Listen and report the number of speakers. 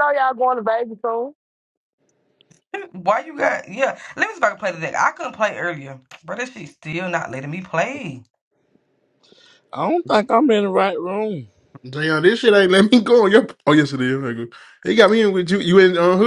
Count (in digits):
4